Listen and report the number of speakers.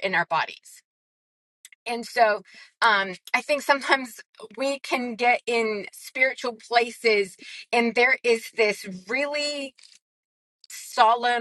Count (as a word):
one